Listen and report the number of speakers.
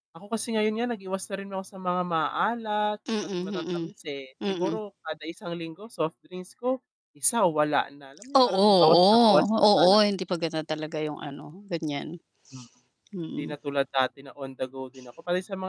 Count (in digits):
2